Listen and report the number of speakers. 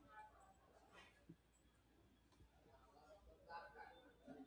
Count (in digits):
0